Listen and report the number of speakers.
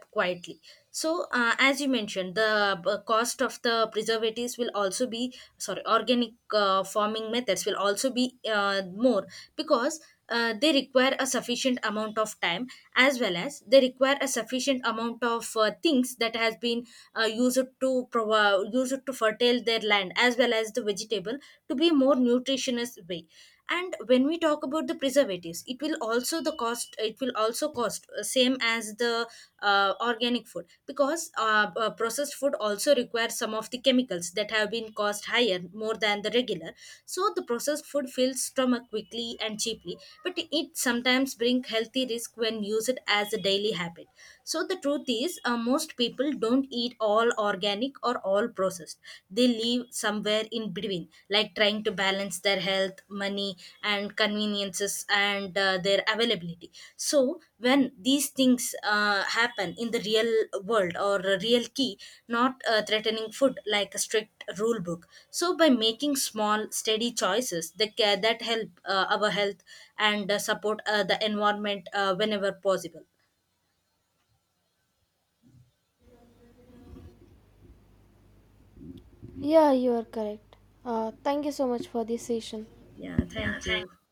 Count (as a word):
two